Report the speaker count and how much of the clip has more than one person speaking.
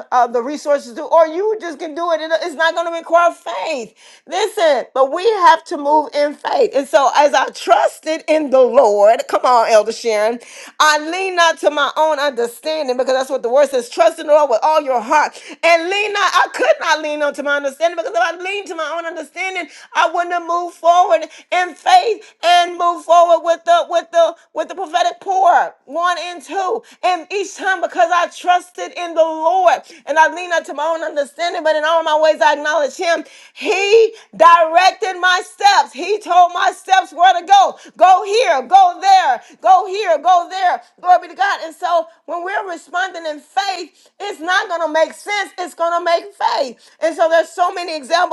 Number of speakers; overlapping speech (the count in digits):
1, no overlap